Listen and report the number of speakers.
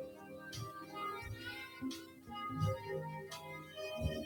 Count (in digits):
0